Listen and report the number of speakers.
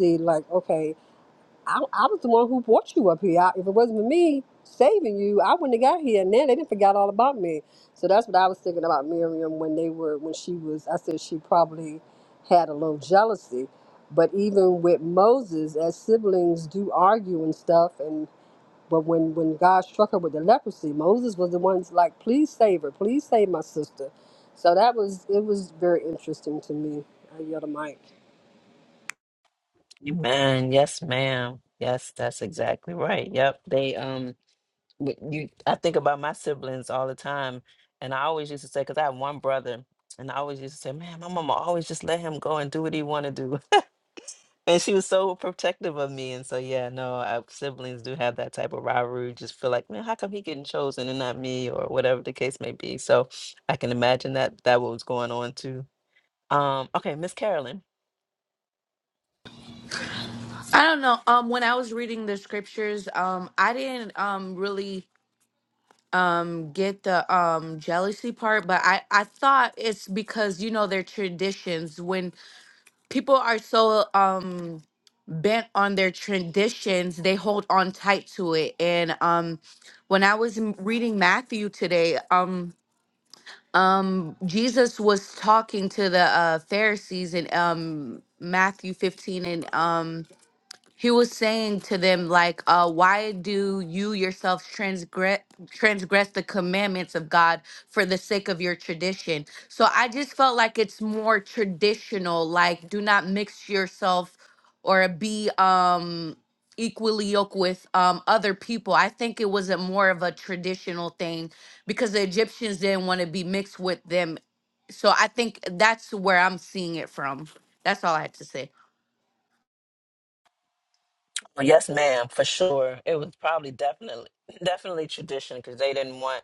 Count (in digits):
3